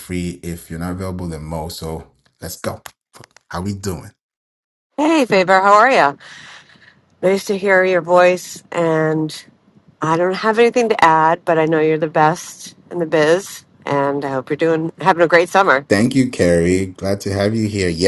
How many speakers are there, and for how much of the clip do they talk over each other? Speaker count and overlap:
2, no overlap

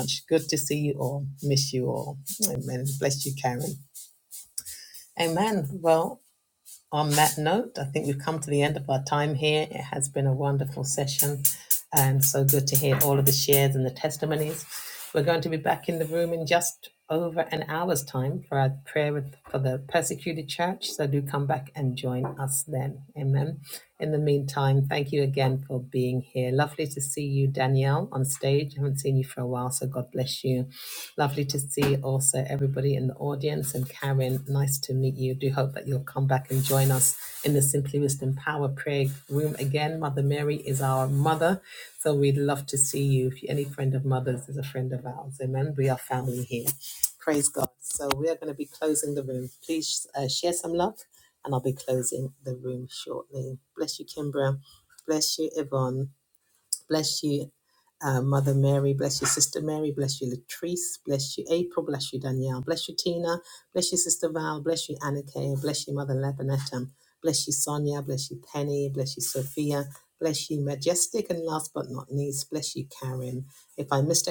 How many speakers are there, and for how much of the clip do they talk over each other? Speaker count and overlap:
1, no overlap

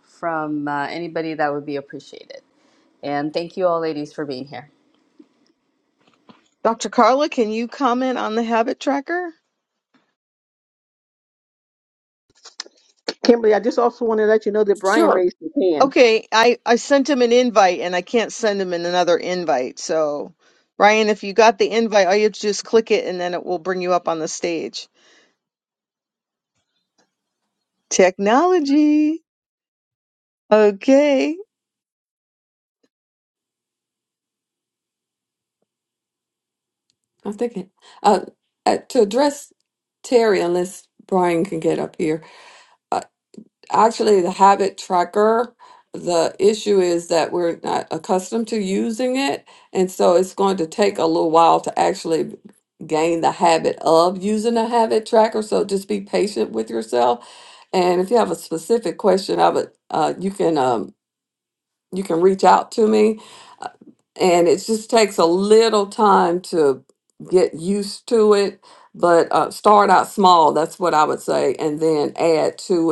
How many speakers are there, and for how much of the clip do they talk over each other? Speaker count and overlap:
4, about 1%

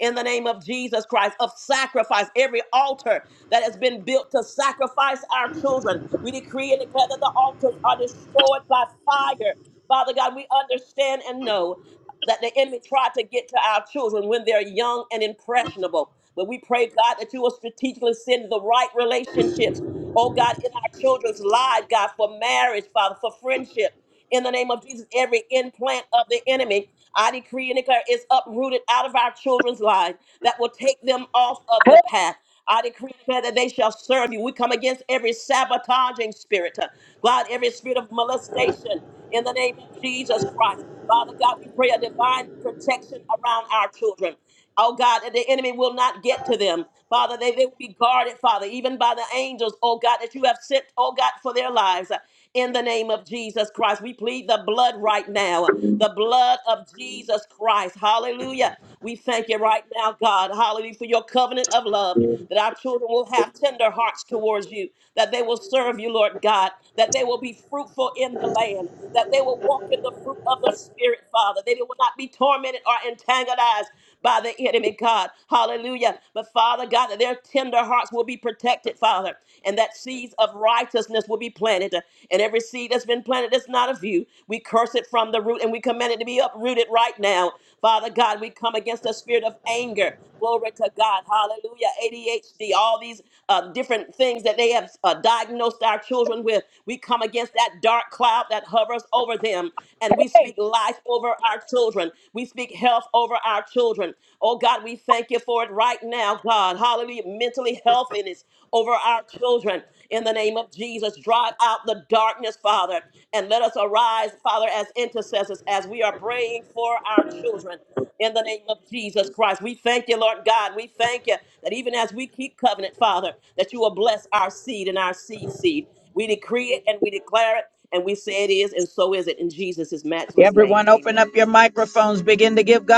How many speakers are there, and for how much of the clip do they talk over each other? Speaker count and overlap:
2, about 1%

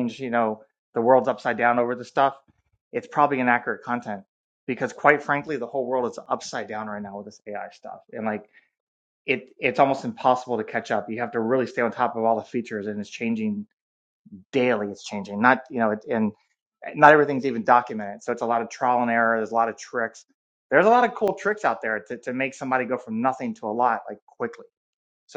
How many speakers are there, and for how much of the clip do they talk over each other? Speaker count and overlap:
1, no overlap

